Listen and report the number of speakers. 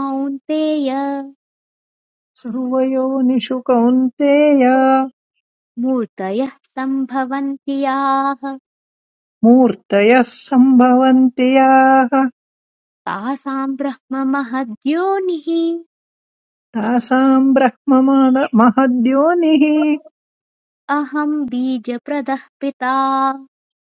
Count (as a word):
two